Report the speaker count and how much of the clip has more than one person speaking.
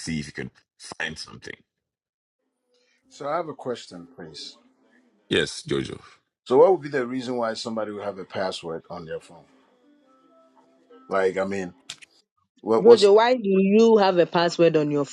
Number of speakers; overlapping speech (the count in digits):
3, about 2%